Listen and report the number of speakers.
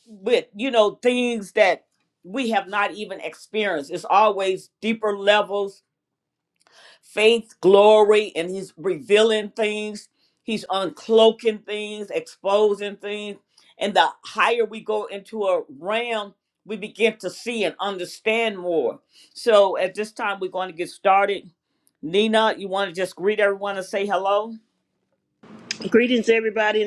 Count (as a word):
two